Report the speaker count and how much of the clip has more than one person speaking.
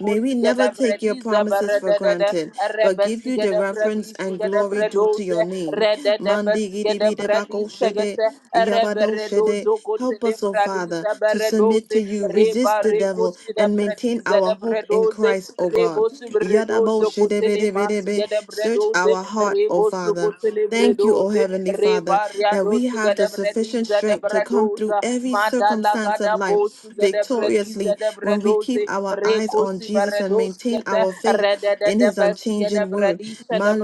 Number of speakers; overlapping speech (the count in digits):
2, about 80%